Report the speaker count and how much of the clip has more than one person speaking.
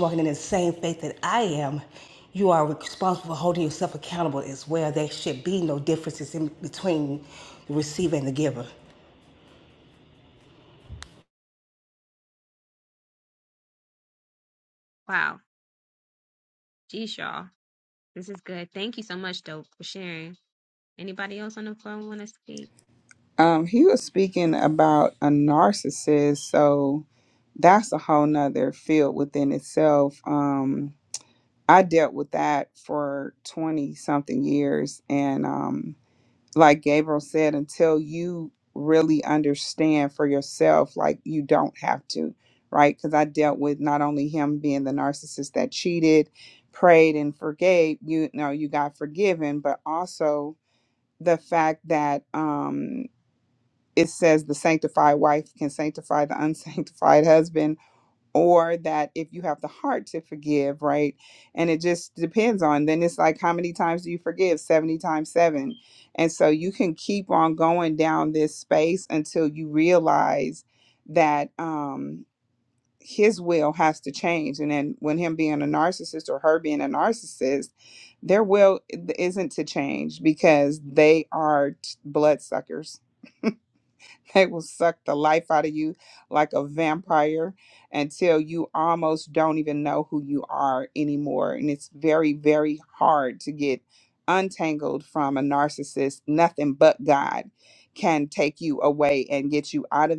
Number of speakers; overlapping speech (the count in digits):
3, no overlap